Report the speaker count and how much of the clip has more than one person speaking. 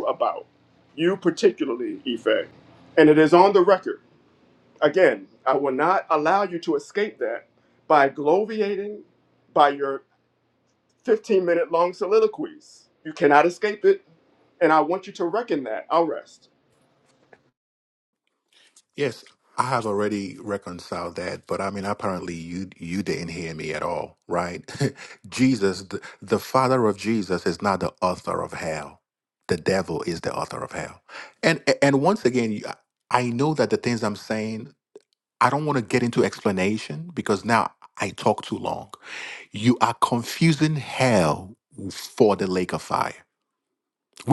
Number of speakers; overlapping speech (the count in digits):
2, no overlap